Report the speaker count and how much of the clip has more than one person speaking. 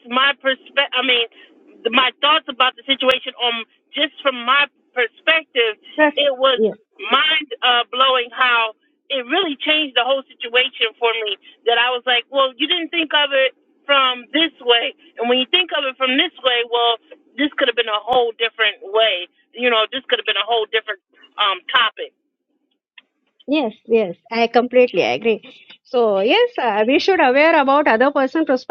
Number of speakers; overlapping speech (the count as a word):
two, under 1%